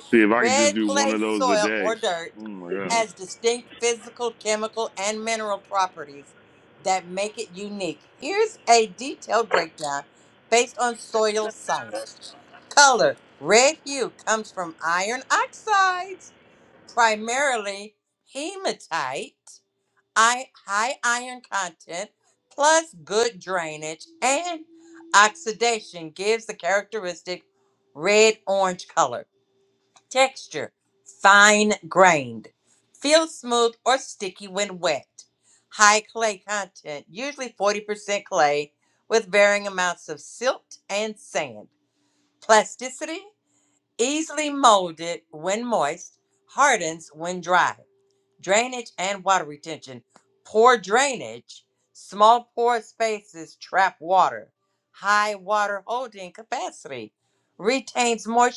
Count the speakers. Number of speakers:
2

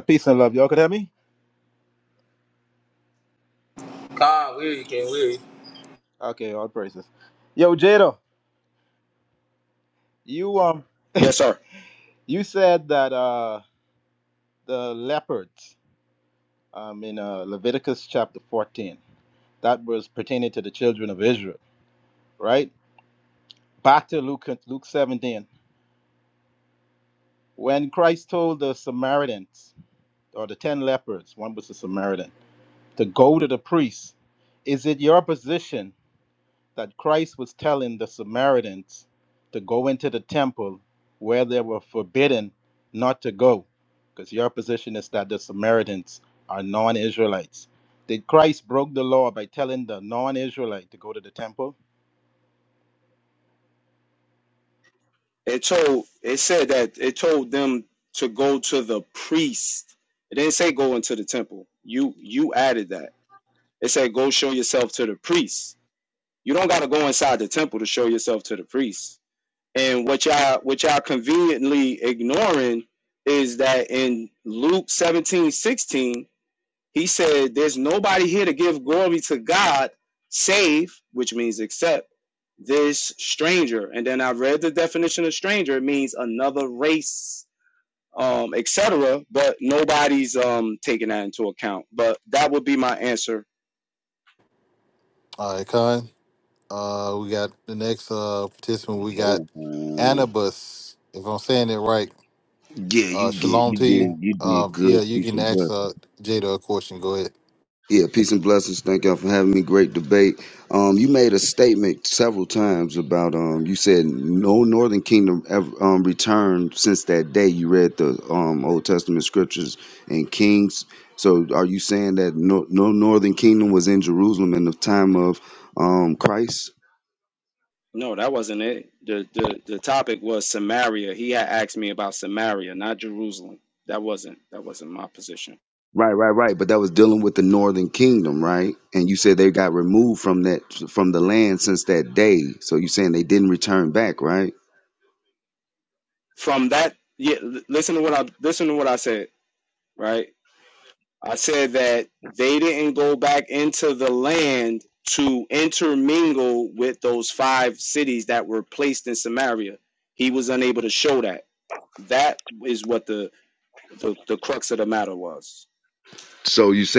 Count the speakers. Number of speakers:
5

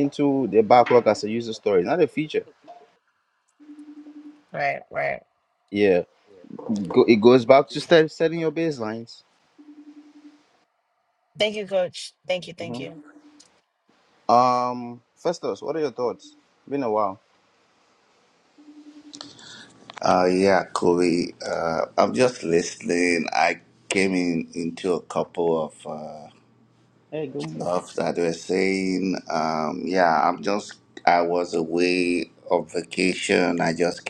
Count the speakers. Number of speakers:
3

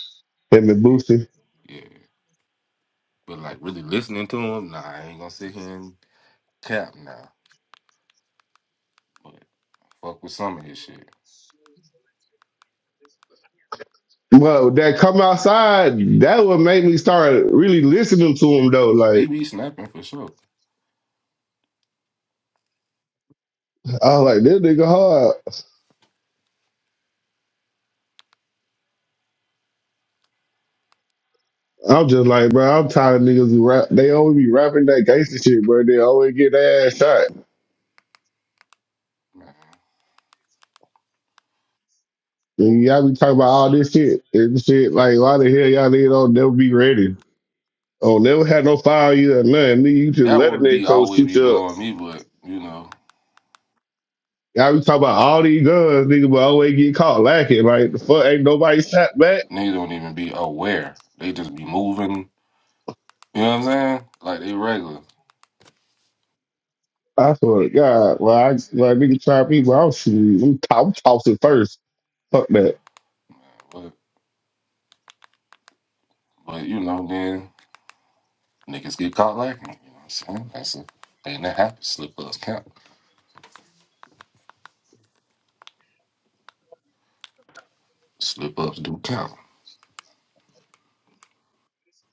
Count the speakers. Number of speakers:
2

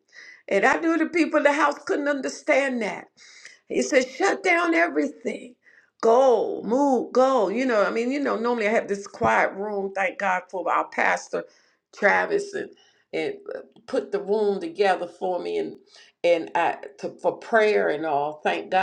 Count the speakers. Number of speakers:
1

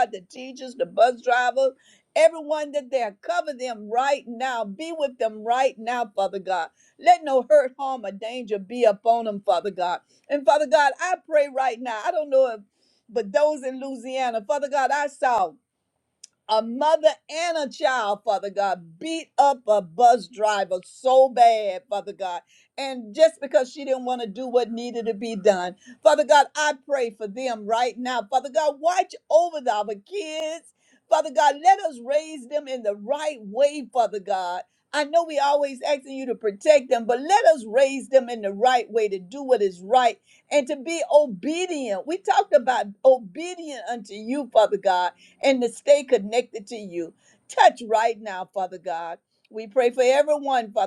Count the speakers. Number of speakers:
1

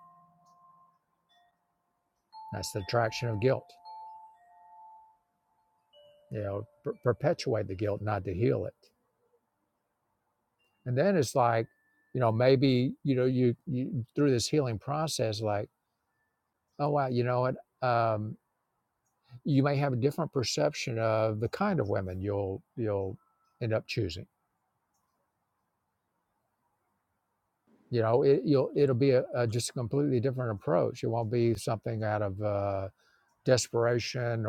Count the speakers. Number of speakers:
1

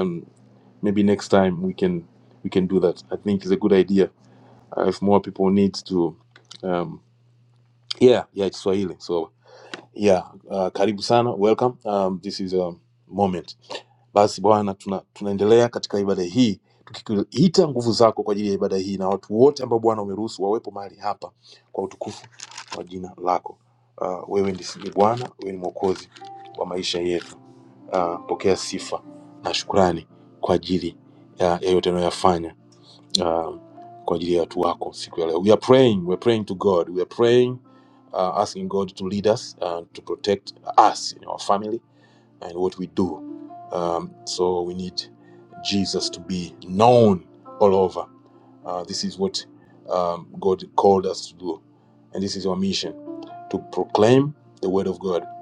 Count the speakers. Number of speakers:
1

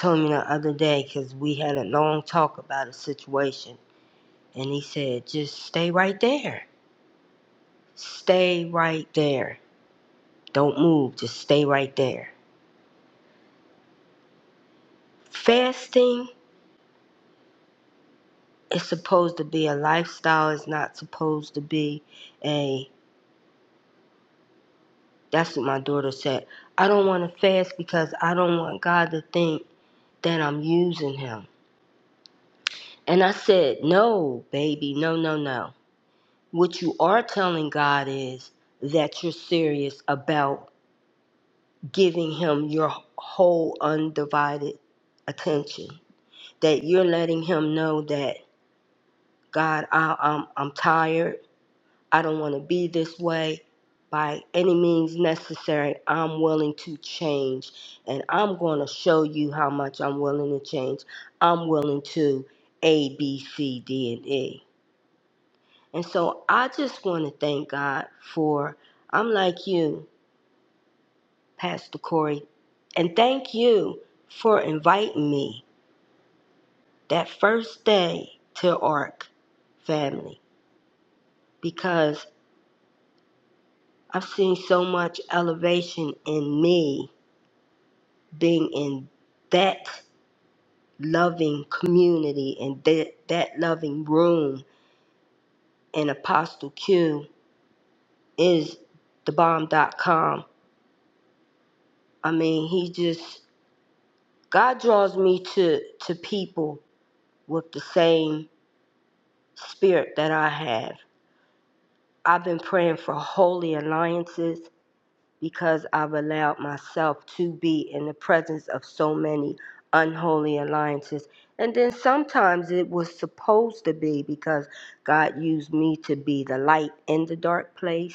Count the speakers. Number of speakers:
1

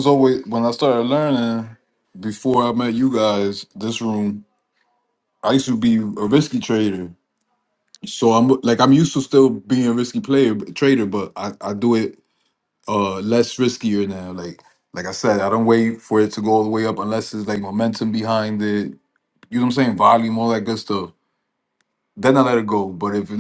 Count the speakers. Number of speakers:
1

